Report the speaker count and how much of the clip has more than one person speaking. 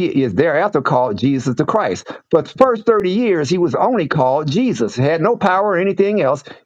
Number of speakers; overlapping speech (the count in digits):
1, no overlap